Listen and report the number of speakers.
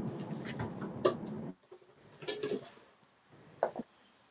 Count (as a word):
zero